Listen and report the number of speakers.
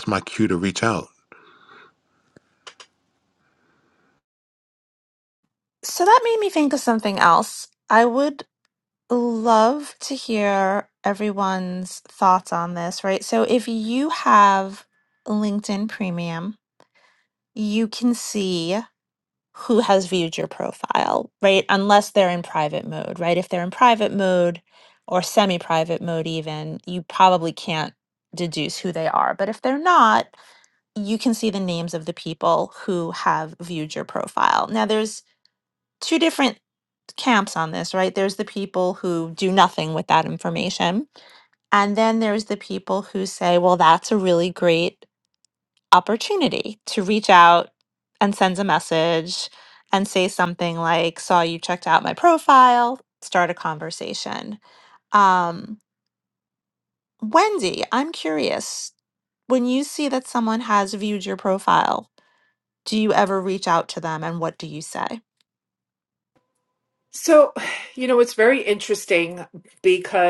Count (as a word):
three